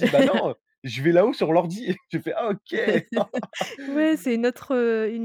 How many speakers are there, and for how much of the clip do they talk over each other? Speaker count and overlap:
2, no overlap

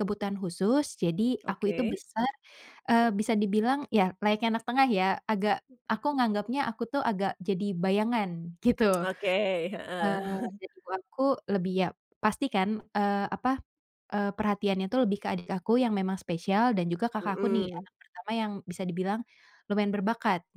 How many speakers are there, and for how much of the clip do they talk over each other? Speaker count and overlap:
2, about 7%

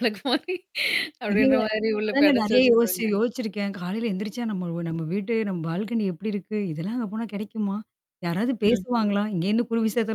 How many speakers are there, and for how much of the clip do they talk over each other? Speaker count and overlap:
2, about 14%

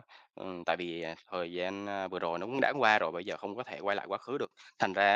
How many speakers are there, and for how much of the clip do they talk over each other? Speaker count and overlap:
1, no overlap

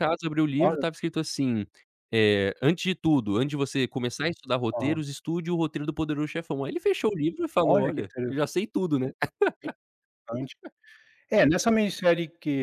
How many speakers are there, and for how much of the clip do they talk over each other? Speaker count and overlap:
2, about 10%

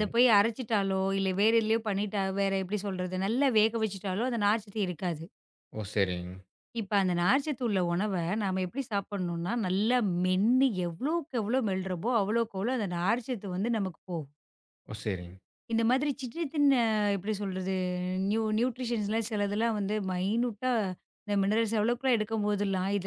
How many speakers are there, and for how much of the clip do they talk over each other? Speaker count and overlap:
2, about 1%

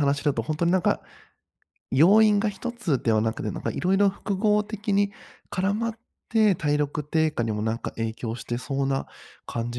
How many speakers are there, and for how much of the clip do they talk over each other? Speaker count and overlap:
1, no overlap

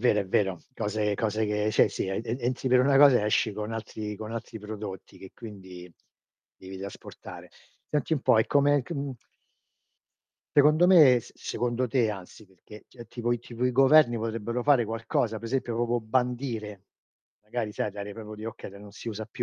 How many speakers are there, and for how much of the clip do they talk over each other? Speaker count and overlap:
1, no overlap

